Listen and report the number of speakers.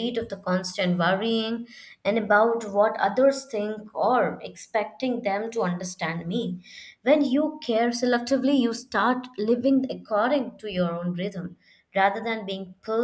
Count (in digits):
1